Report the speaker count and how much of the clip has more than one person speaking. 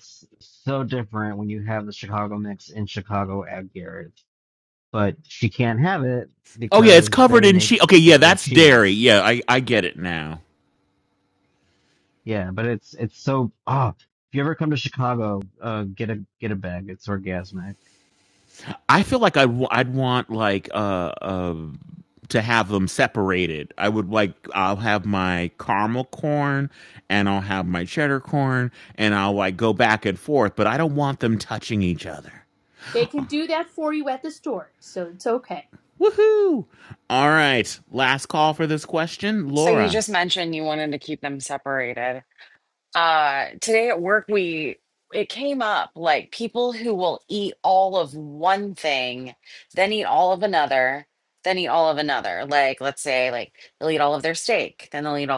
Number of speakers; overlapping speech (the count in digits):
4, about 4%